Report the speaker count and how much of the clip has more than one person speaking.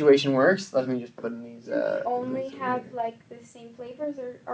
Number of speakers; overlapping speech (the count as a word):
two, about 27%